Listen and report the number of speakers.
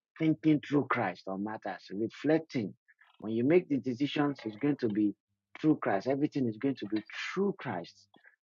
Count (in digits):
1